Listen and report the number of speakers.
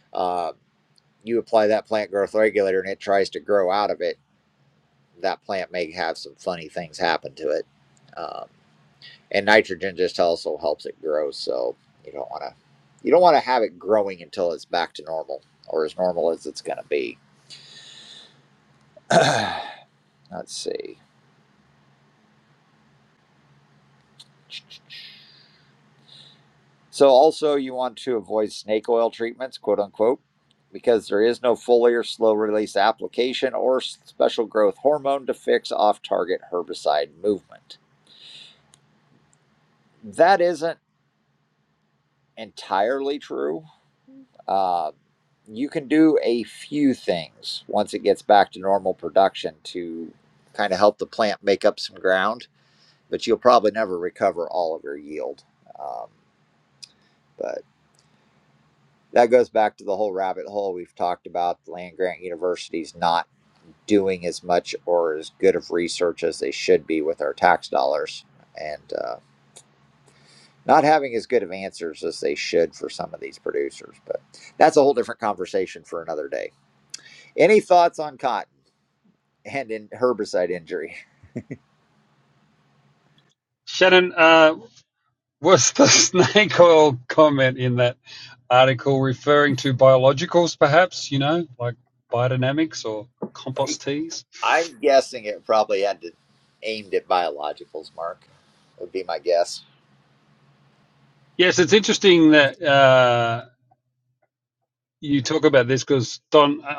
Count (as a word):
two